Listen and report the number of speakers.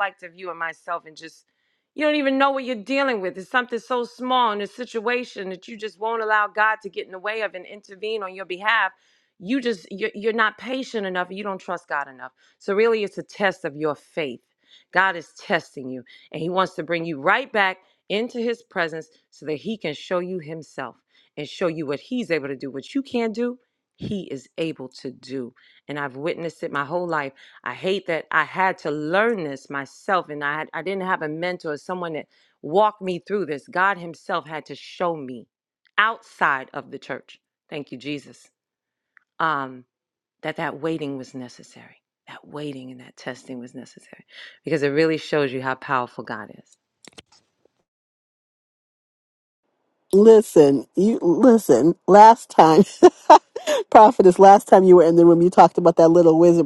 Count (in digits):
2